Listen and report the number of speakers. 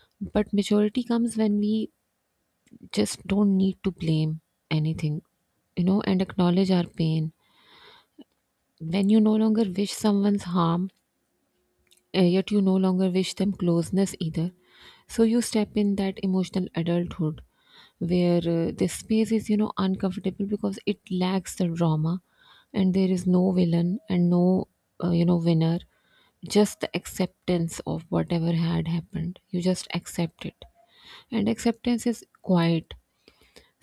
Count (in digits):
1